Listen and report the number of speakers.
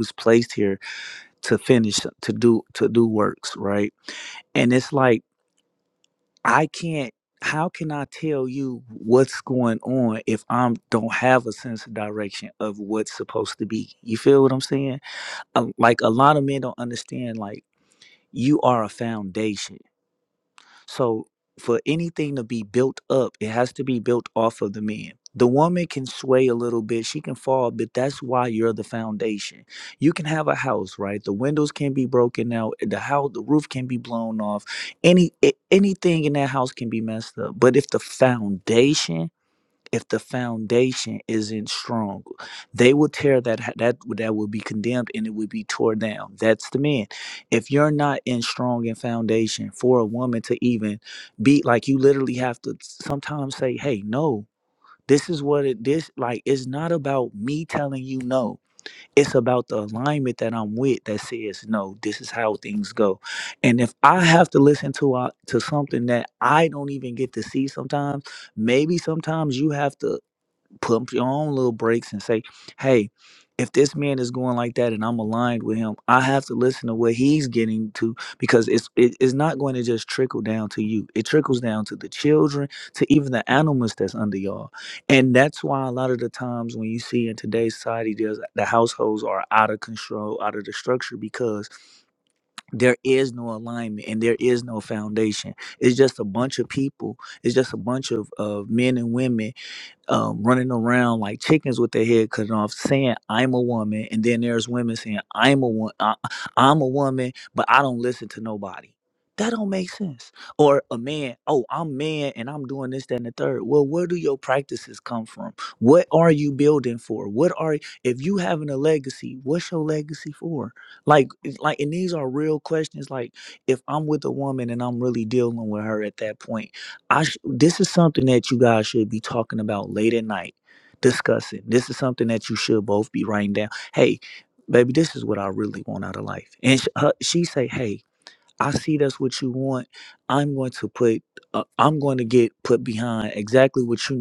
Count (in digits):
1